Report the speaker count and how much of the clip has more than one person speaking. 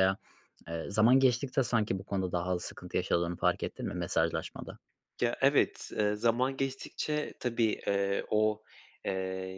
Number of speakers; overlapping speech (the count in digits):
2, no overlap